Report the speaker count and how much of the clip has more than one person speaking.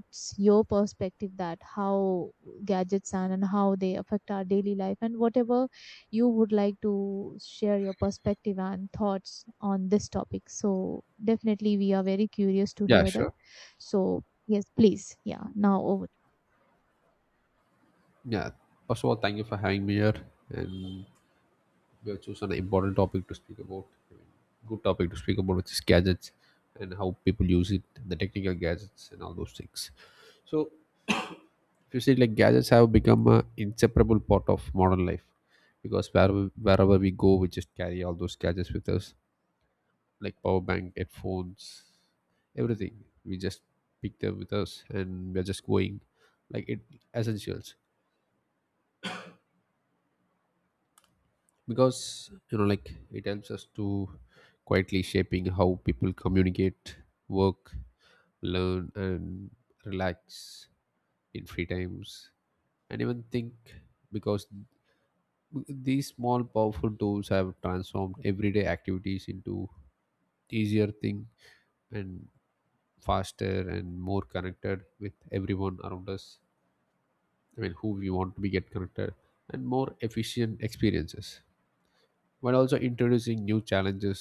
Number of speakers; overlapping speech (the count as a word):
two, under 1%